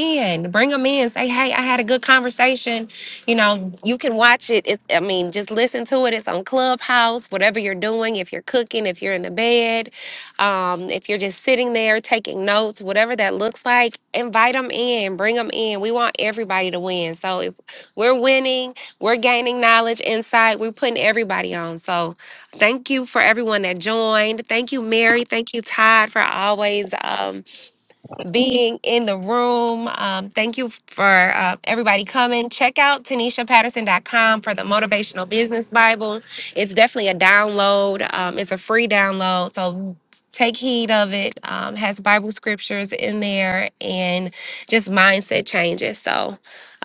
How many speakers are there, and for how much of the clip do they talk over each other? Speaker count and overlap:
1, no overlap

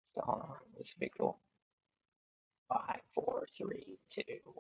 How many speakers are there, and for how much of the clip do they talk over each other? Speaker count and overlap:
1, no overlap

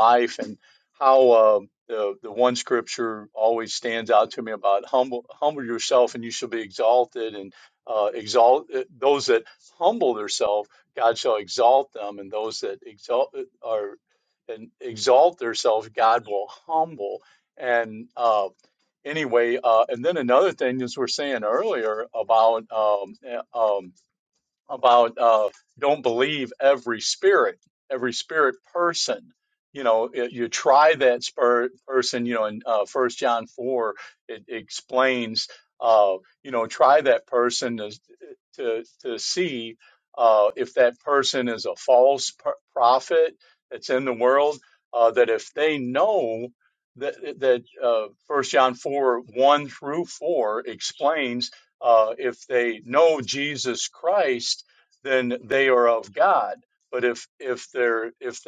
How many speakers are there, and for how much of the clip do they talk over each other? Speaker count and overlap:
1, no overlap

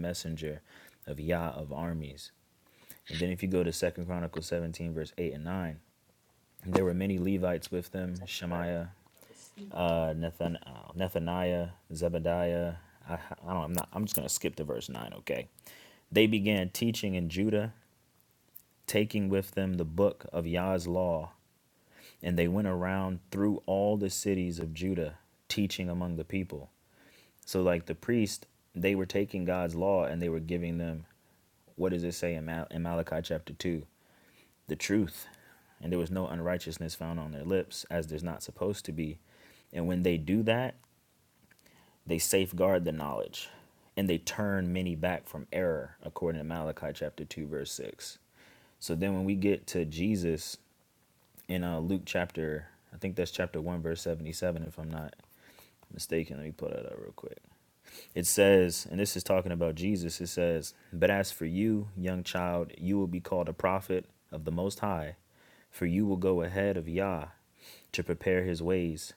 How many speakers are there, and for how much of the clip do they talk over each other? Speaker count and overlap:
1, no overlap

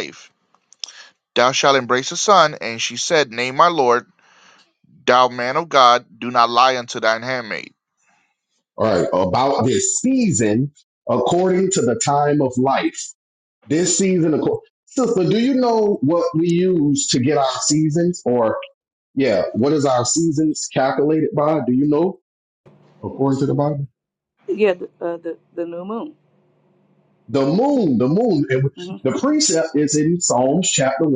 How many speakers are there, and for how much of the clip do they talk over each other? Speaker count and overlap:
3, no overlap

